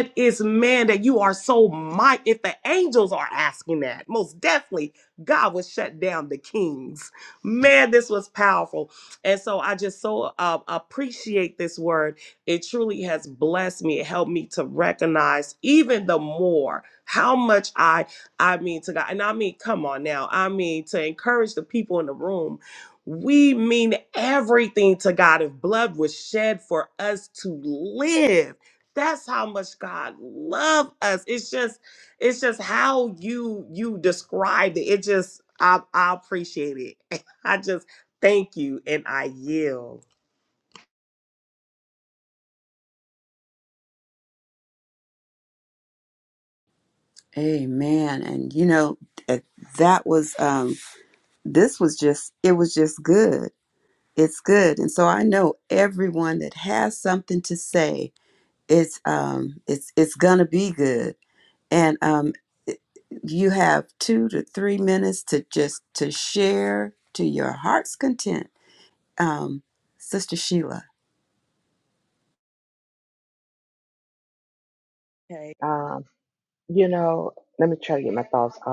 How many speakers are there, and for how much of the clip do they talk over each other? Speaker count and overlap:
three, no overlap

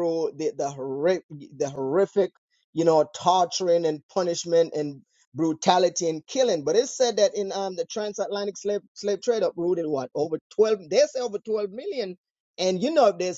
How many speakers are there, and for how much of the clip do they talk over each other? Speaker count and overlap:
one, no overlap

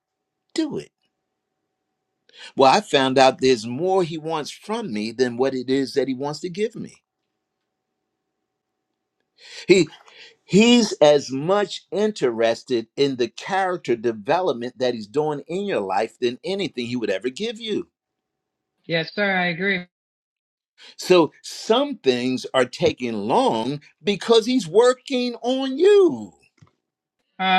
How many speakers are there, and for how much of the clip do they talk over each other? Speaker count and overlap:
two, no overlap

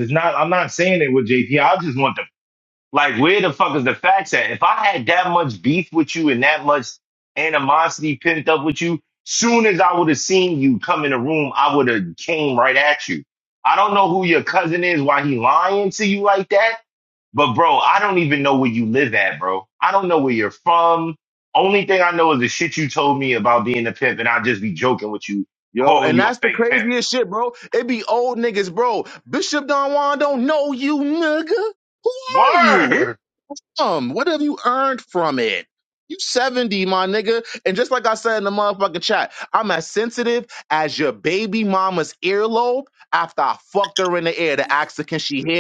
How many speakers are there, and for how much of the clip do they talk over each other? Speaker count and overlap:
two, about 3%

